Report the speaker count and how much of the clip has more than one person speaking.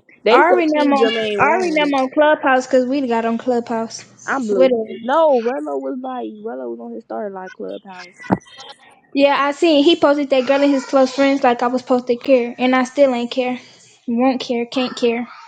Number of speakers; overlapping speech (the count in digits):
2, about 13%